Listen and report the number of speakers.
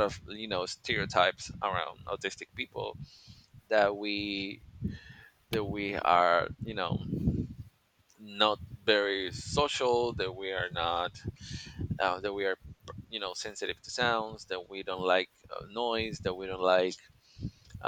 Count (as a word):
one